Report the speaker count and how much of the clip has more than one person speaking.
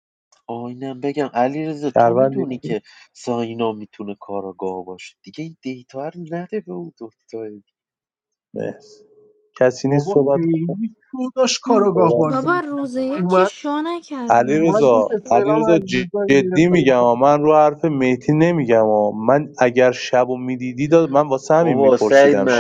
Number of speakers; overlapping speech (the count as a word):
four, about 31%